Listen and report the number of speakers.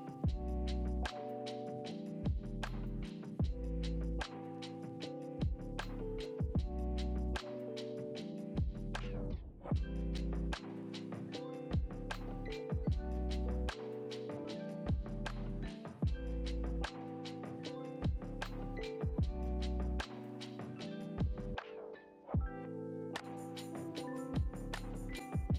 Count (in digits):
0